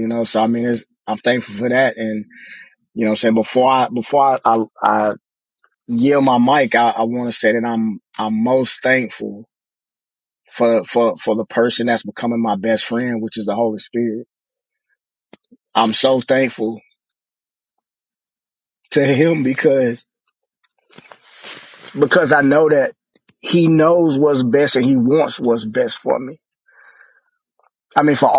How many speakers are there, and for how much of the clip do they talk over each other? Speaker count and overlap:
1, no overlap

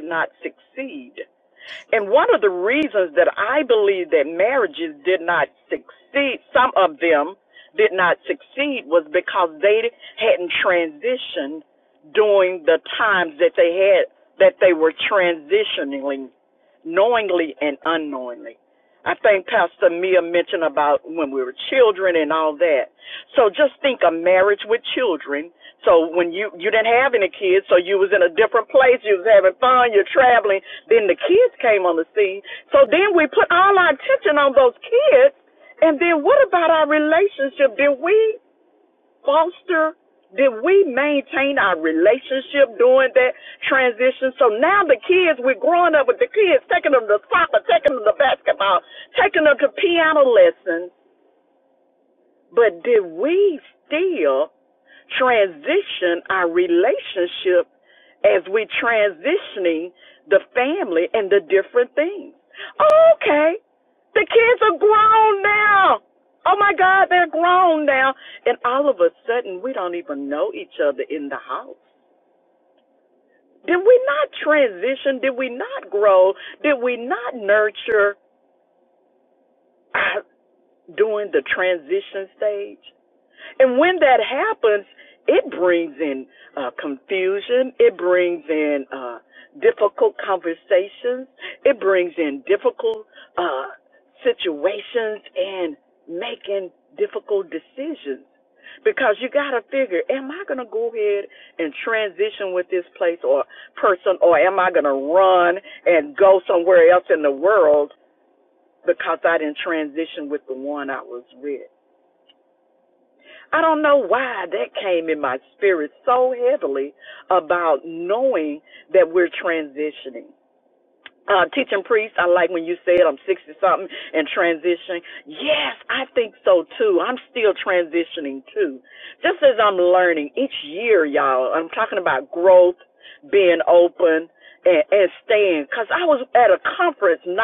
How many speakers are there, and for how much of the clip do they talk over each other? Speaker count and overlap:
1, no overlap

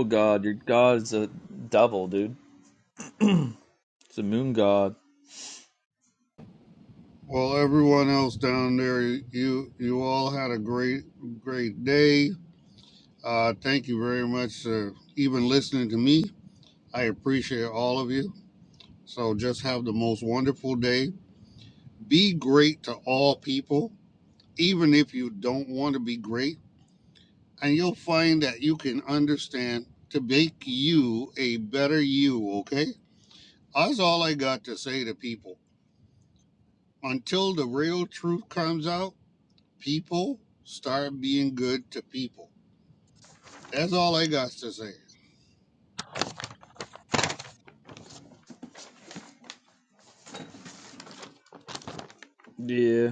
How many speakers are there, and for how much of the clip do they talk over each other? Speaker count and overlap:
2, no overlap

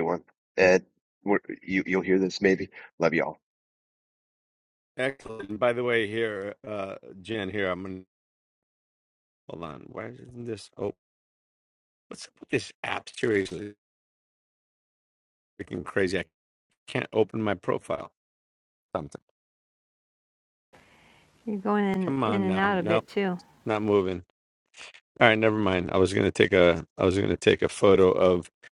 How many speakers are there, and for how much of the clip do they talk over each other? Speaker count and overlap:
3, about 3%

